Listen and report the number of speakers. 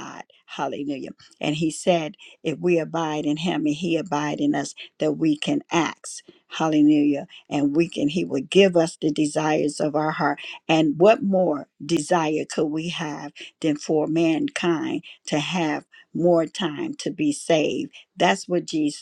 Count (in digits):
1